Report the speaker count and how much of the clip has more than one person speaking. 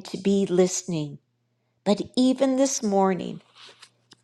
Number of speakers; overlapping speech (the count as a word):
one, no overlap